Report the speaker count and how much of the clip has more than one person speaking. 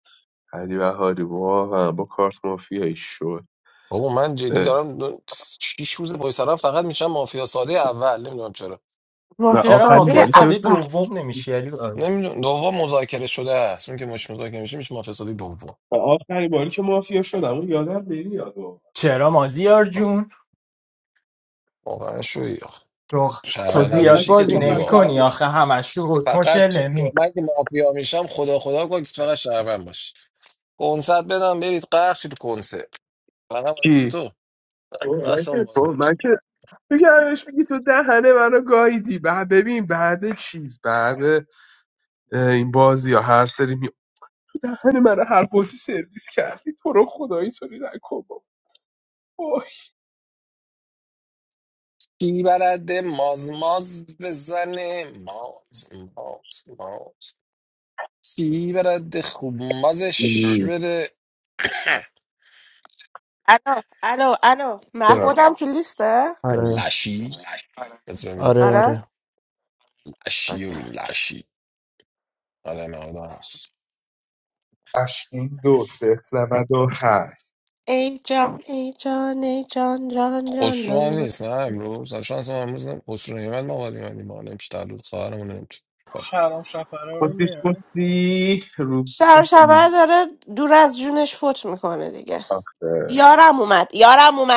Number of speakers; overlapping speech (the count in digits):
5, about 8%